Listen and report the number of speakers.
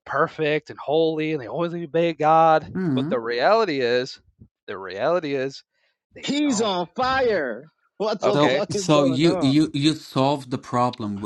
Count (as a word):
three